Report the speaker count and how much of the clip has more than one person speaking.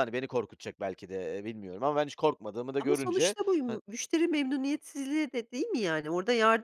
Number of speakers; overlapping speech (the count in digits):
2, about 10%